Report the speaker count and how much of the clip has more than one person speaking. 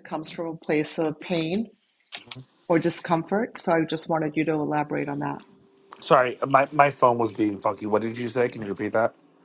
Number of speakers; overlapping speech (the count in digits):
2, no overlap